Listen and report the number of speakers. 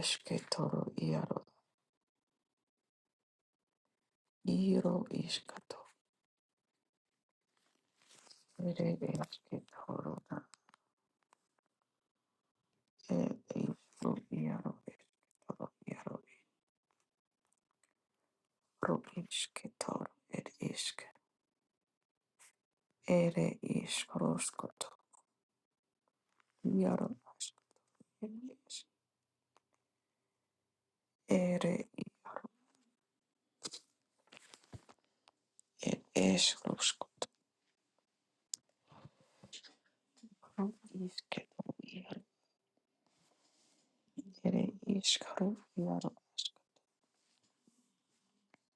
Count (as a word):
one